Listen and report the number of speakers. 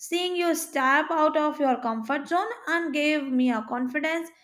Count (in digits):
1